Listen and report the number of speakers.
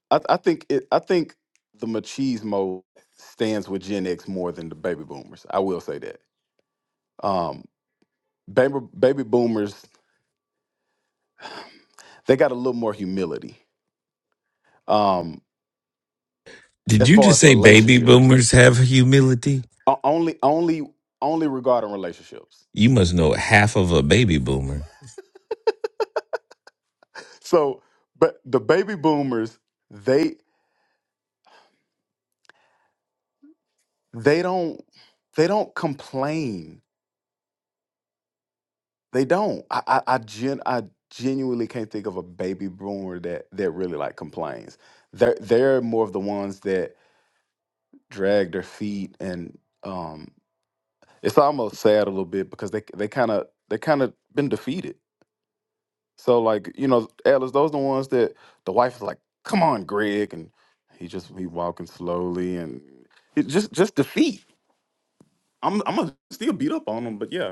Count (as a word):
two